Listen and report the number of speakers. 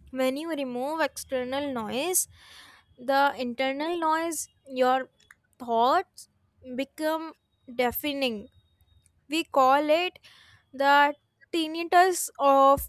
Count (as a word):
one